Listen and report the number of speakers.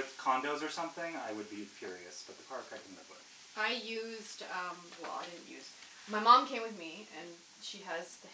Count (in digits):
2